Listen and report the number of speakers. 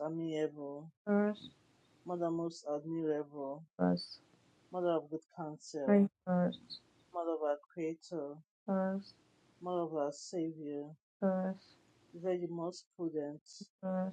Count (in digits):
2